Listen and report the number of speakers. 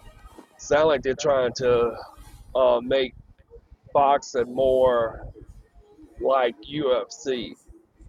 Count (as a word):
one